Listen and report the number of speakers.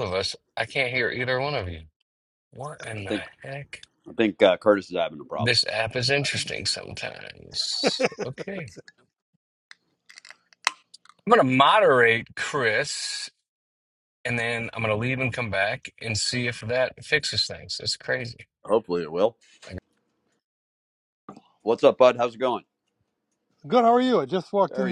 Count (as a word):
three